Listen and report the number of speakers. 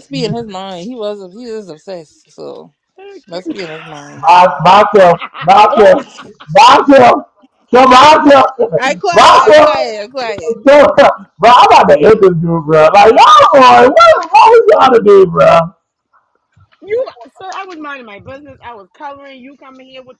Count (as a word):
three